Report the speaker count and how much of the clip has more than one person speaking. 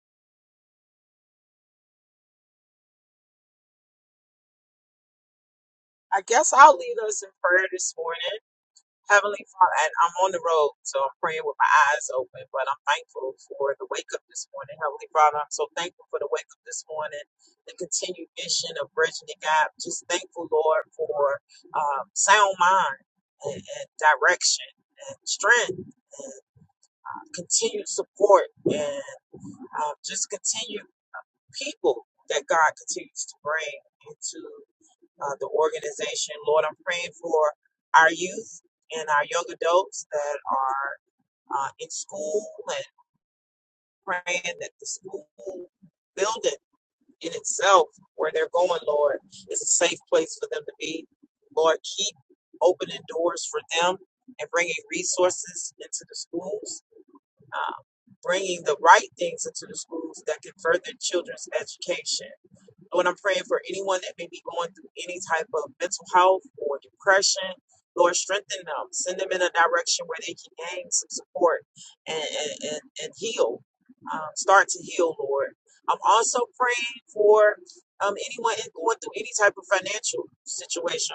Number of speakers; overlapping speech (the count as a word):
one, no overlap